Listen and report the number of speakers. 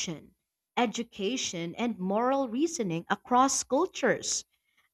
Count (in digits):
1